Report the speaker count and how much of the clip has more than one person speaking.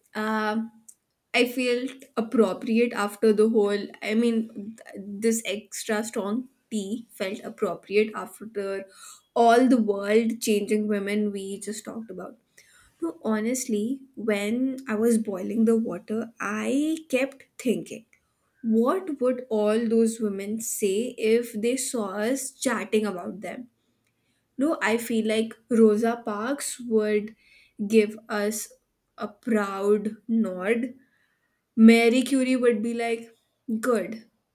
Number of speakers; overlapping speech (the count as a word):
one, no overlap